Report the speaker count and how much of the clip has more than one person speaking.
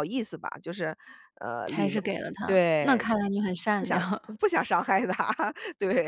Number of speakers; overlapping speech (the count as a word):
two, about 15%